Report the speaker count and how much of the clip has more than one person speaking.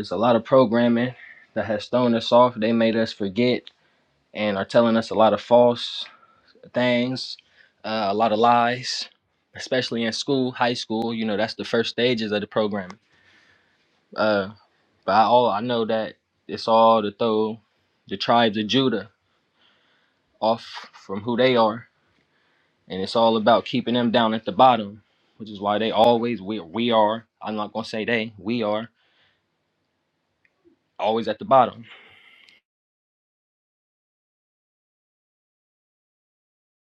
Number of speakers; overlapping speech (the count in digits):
1, no overlap